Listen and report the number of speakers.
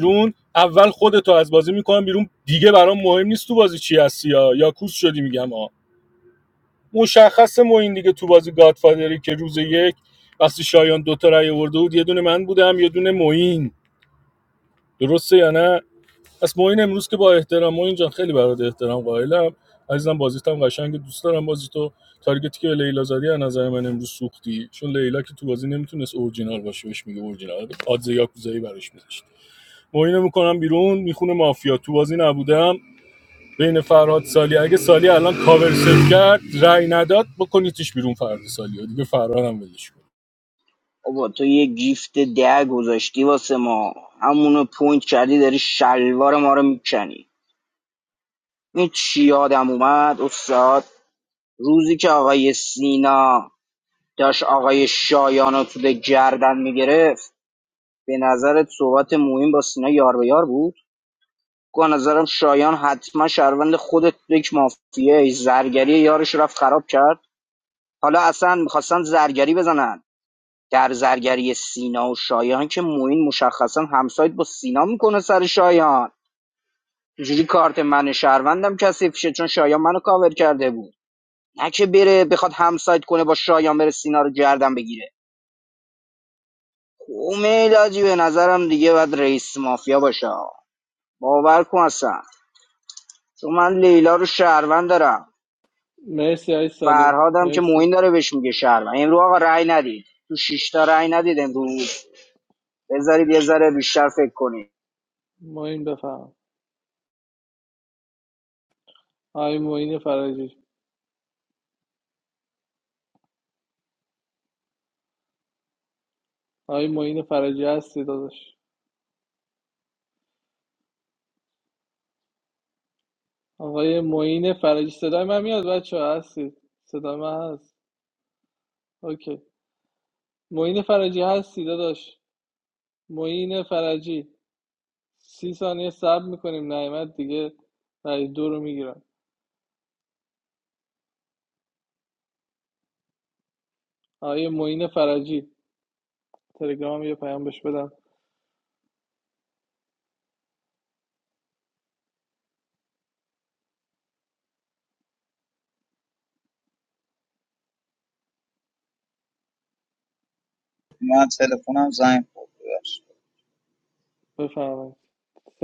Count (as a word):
four